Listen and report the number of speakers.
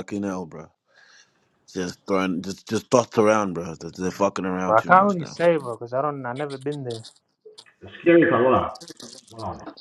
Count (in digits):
3